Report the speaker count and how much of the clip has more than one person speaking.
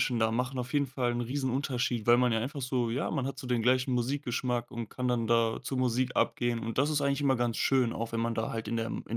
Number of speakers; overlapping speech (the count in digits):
1, no overlap